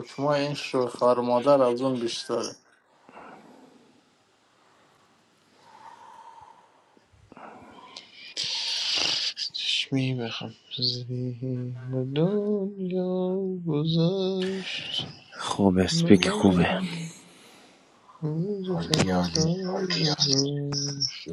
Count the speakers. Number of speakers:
4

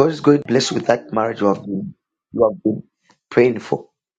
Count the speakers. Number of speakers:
1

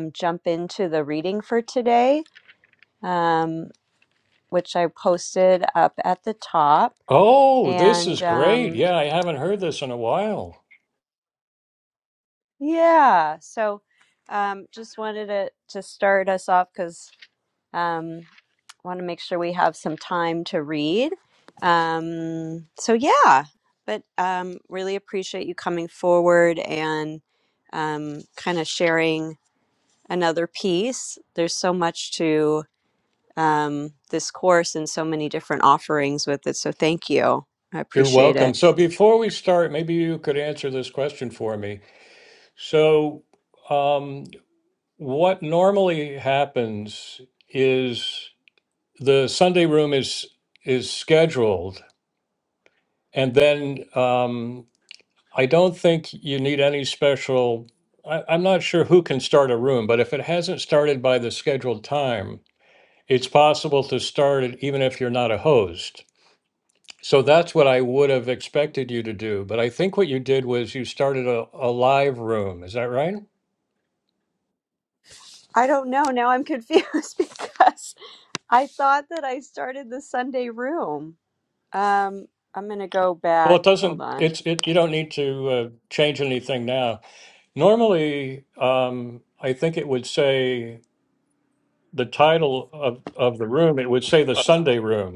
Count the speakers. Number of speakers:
2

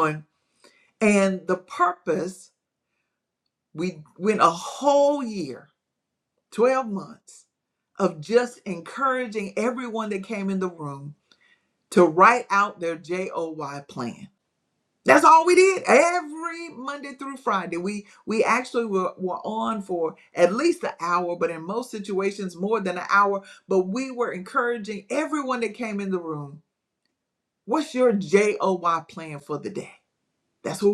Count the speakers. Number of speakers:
1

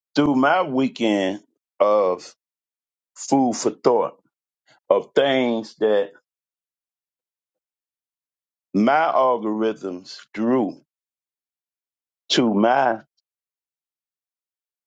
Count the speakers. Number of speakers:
1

